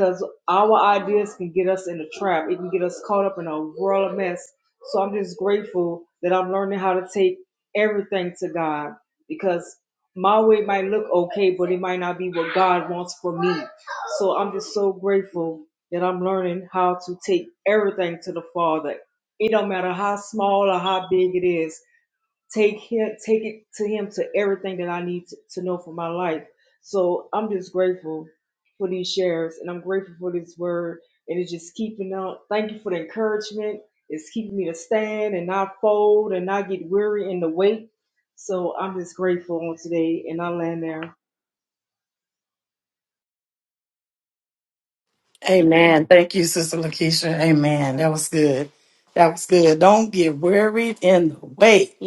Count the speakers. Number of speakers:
2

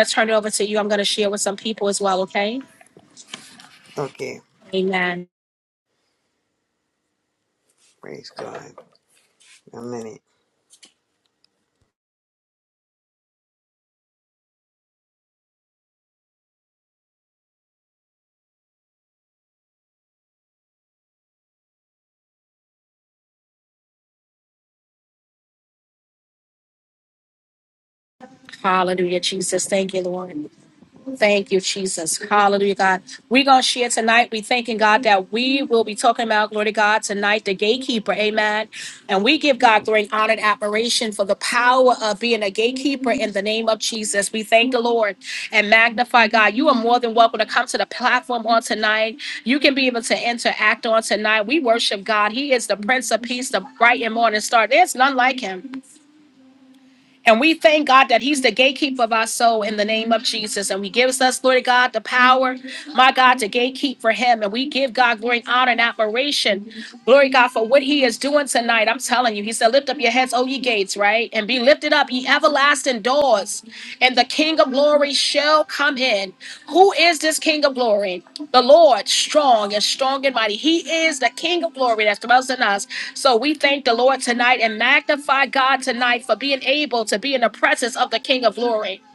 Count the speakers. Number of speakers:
2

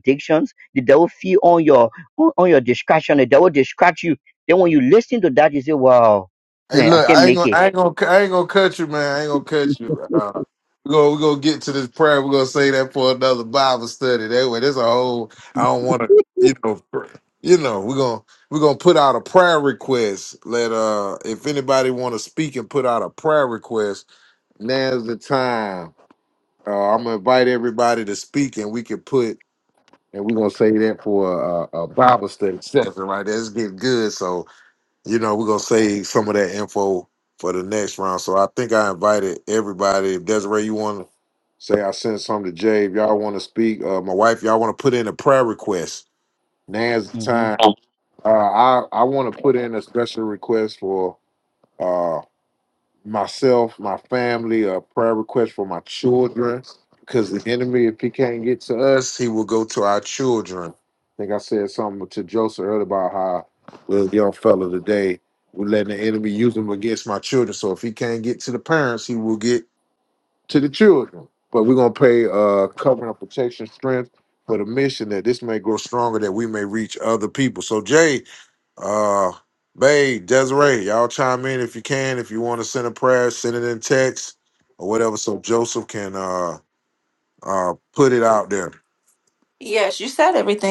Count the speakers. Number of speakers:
3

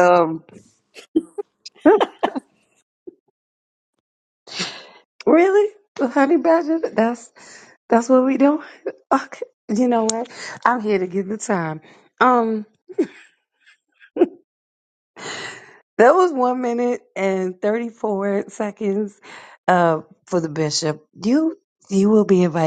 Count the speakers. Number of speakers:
1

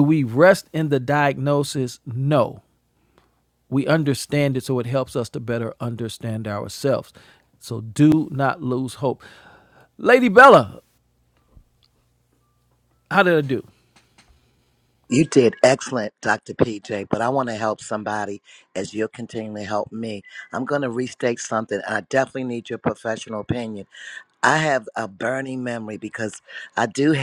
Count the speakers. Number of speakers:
2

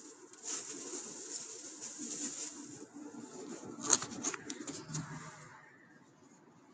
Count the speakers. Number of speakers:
0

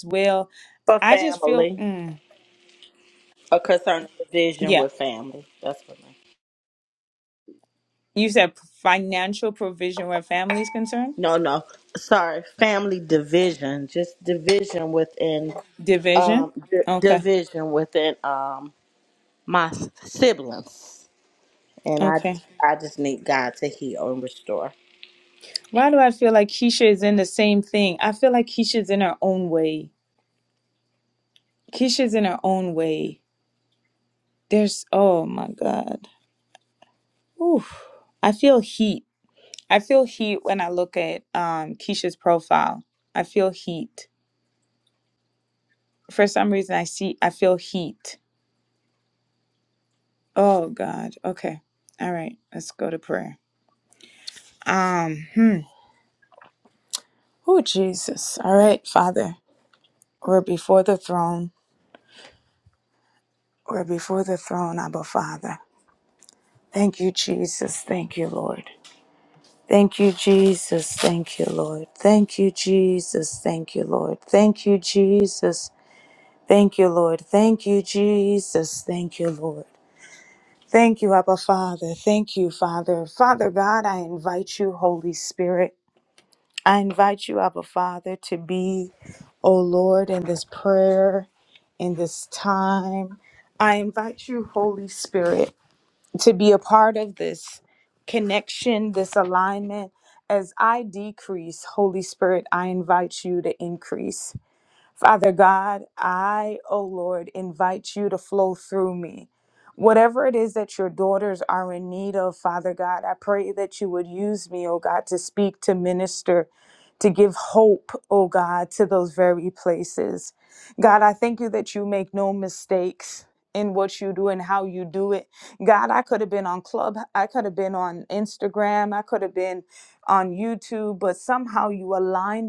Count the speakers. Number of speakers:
2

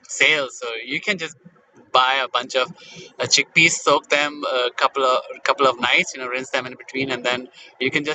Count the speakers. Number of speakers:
1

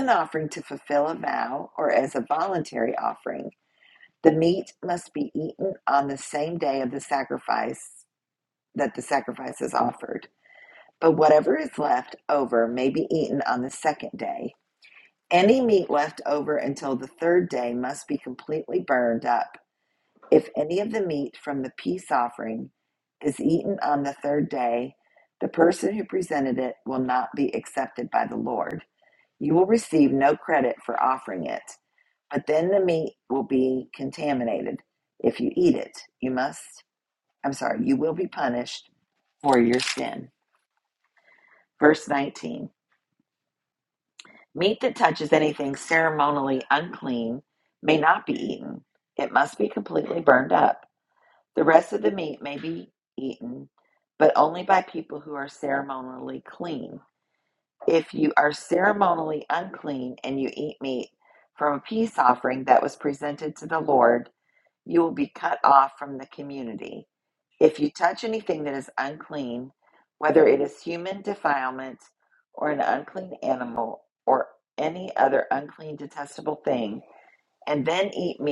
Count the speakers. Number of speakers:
1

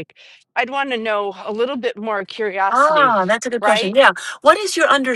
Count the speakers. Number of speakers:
2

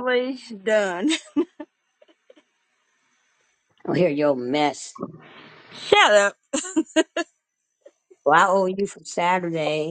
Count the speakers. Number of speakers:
2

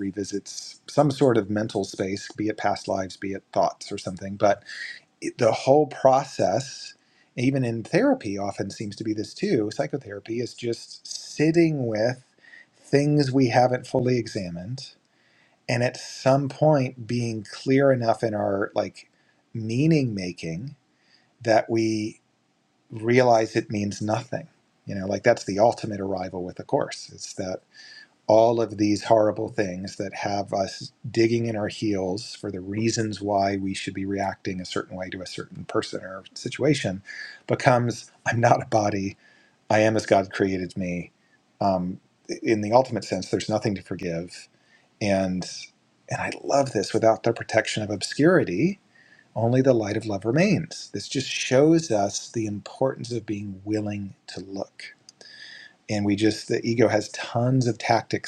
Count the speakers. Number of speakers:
1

